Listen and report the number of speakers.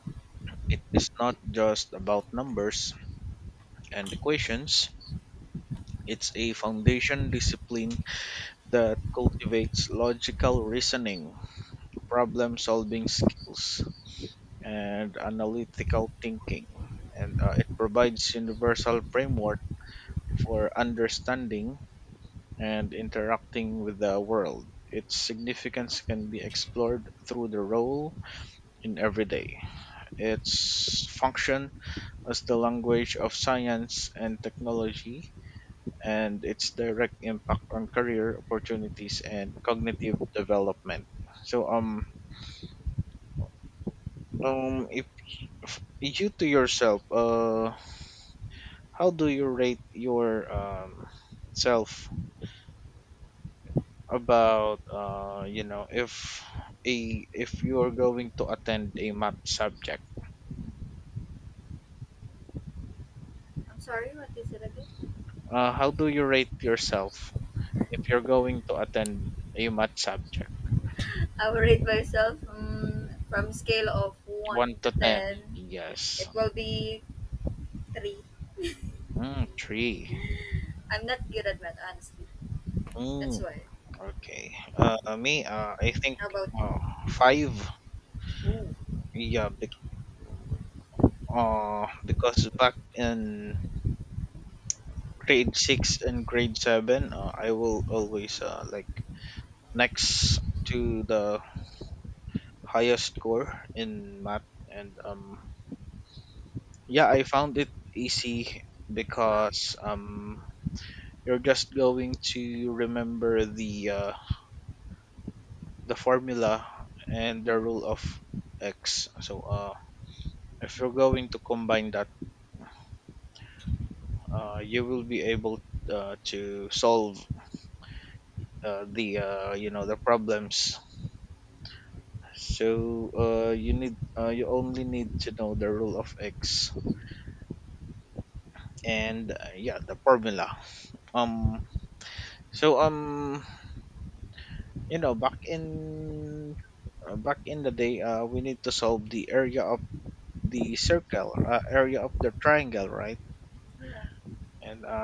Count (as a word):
two